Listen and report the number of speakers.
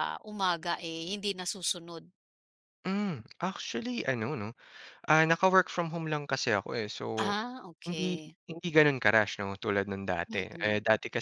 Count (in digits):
2